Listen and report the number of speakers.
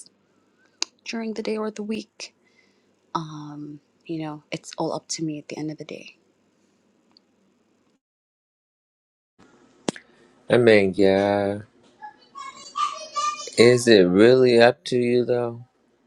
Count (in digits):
2